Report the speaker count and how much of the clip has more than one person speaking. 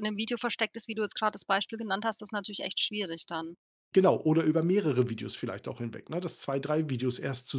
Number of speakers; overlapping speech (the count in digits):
2, no overlap